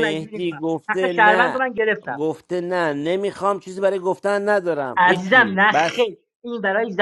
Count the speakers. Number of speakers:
two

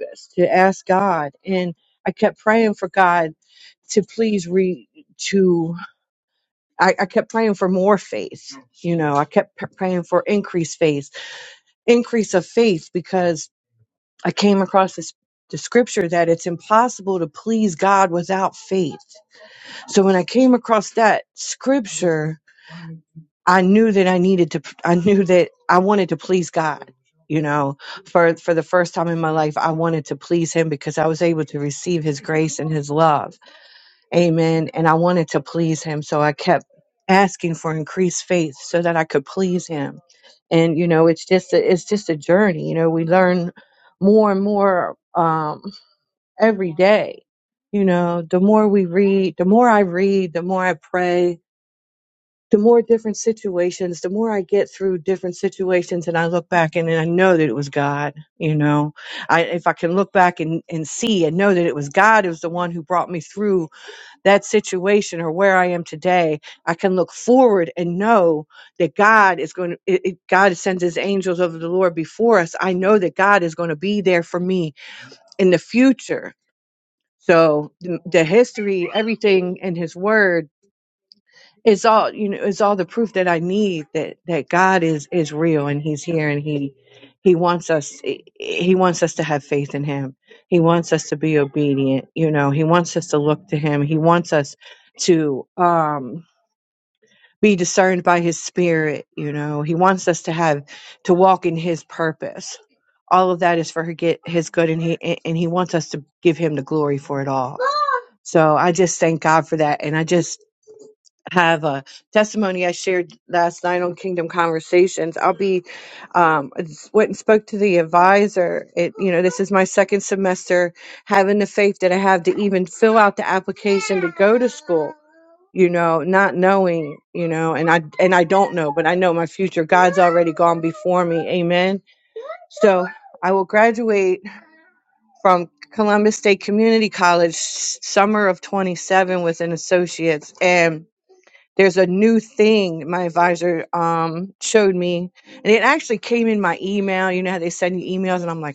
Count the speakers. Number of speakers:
one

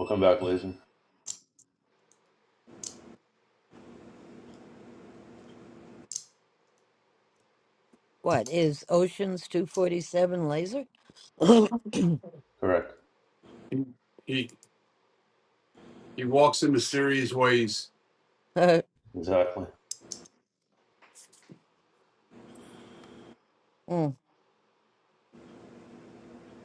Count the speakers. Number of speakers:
three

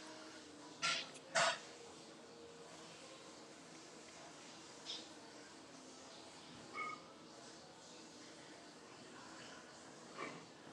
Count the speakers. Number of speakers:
zero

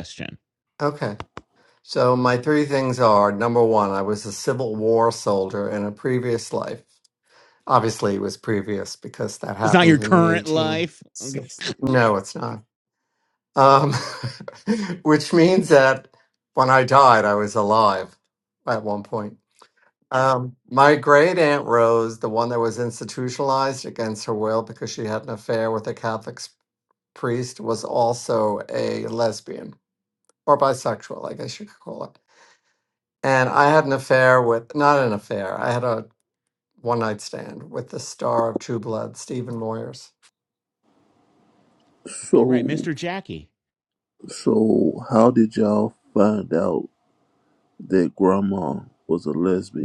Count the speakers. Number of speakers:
three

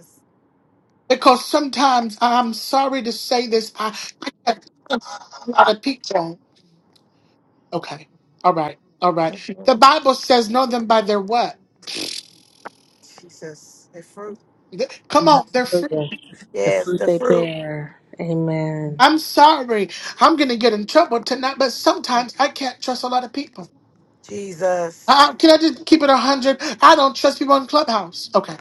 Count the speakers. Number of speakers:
three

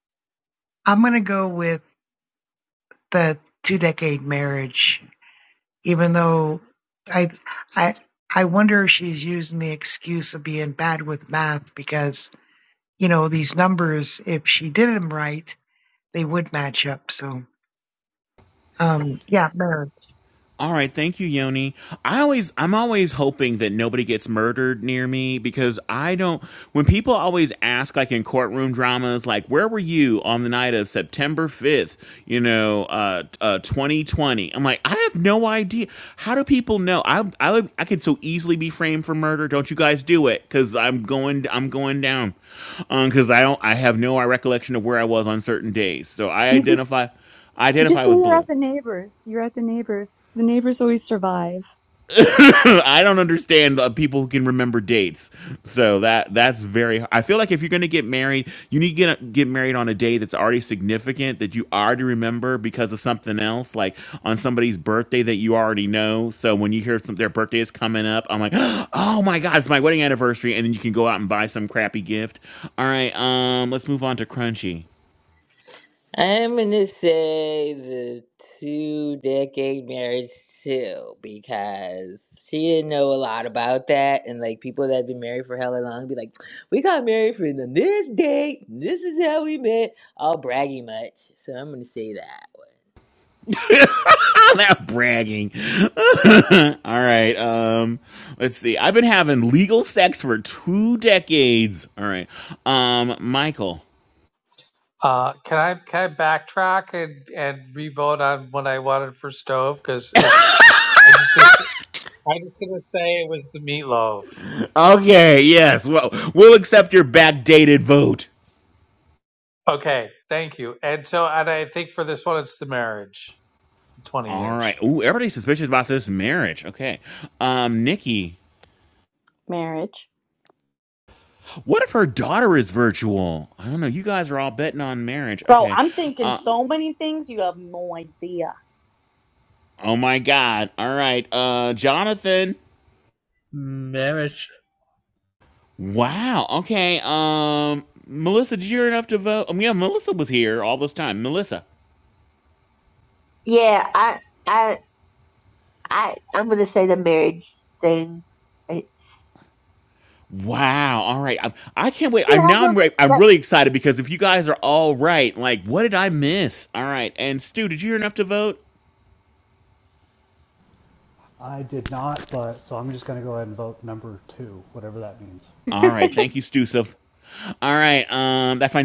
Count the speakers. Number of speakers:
nine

